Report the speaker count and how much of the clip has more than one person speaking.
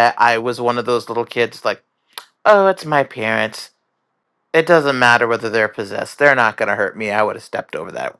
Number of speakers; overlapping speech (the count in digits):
1, no overlap